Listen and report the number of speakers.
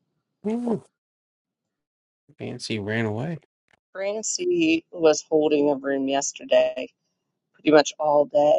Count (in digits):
2